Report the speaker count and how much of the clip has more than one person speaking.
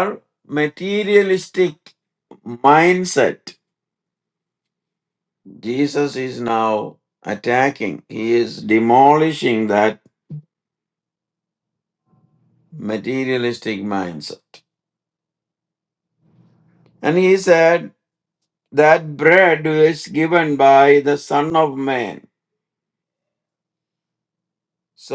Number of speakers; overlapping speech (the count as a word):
one, no overlap